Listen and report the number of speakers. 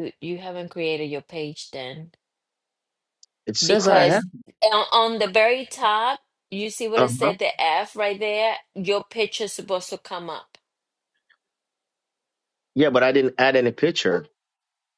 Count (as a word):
two